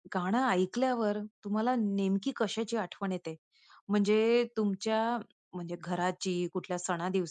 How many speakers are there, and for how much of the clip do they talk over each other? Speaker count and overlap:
1, no overlap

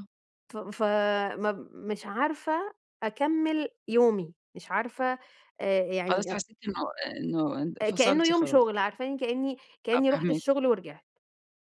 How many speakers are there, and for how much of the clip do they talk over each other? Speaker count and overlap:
2, about 14%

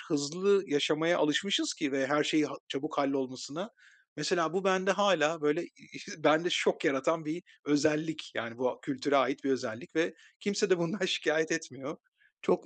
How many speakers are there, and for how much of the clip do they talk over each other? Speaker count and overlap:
1, no overlap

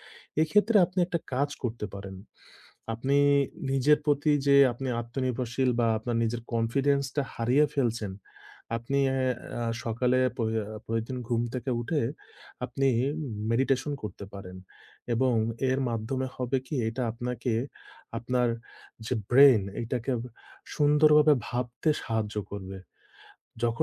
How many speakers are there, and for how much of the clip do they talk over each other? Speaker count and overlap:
1, no overlap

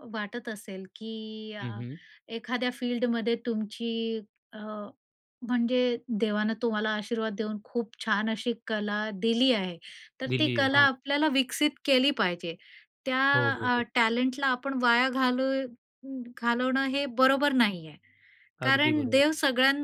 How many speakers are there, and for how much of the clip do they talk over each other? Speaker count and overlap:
2, about 9%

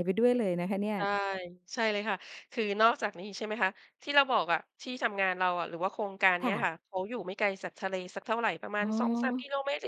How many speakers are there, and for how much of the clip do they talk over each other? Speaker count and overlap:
2, about 9%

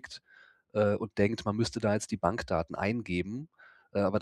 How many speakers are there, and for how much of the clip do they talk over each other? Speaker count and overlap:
1, no overlap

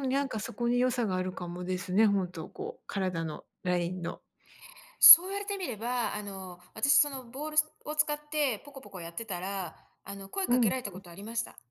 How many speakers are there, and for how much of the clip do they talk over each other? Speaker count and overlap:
2, about 4%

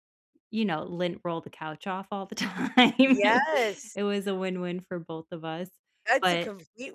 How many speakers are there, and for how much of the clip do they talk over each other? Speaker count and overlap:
2, about 7%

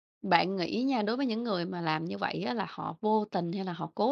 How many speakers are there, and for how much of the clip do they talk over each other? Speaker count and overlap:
1, no overlap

